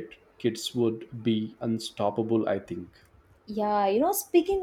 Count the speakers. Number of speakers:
2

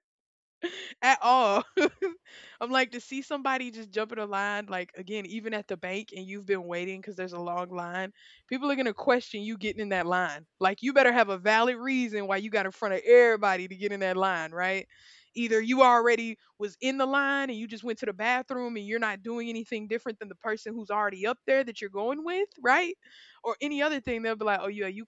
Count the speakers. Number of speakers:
1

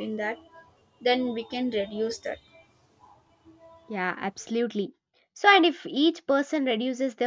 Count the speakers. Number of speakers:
2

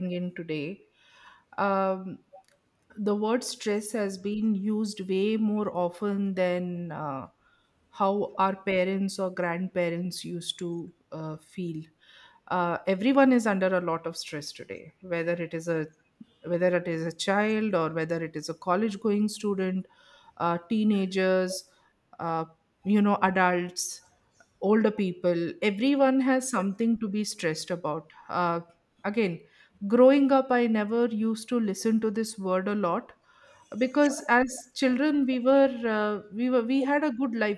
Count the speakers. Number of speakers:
1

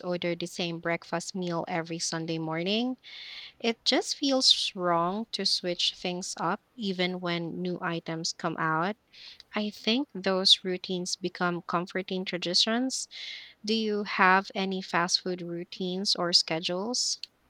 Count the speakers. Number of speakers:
1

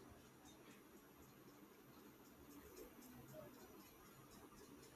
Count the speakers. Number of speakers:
0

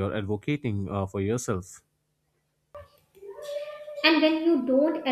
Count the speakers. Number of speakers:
2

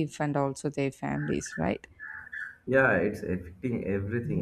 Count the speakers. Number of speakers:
2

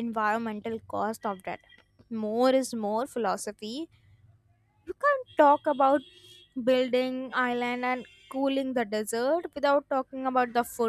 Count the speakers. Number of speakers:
1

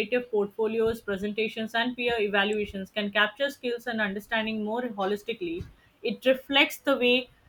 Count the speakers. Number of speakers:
1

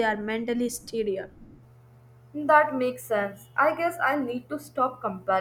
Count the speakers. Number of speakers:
2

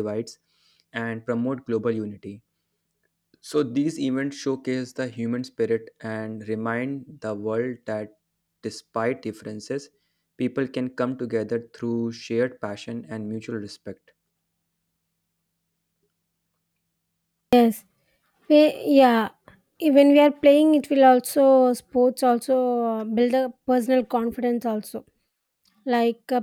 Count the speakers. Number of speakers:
2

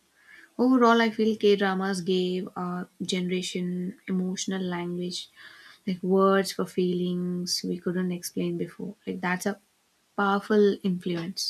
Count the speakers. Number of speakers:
1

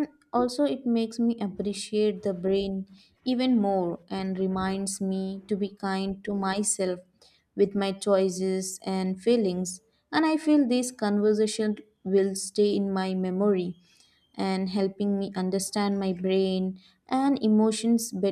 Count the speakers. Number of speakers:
1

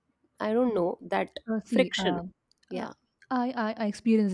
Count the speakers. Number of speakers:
2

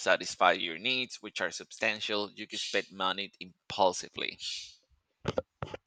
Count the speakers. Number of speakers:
1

